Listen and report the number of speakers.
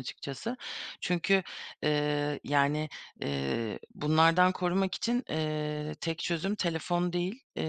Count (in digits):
1